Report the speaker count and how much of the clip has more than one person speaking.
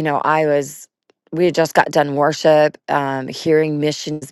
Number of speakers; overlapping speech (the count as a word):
one, no overlap